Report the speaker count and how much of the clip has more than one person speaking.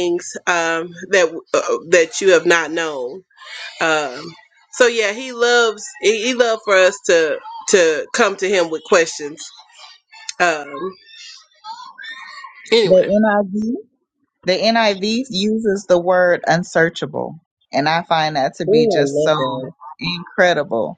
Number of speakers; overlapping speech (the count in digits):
2, about 5%